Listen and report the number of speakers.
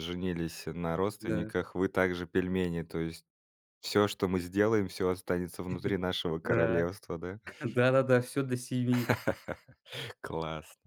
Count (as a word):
two